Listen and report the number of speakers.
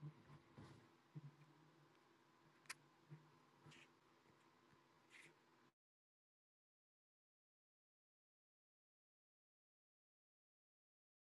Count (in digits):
0